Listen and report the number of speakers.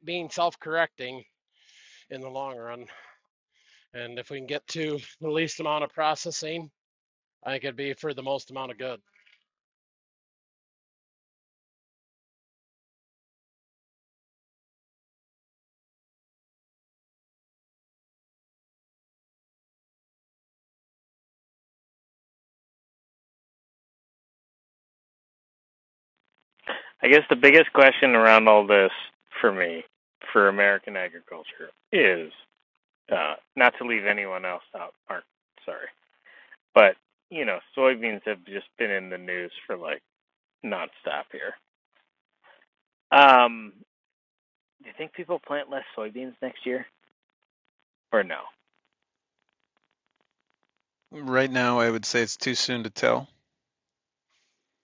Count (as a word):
three